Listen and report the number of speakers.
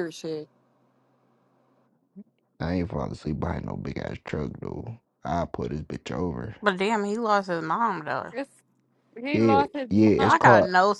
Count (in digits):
3